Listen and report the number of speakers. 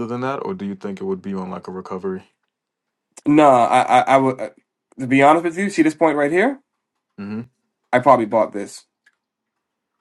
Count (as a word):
two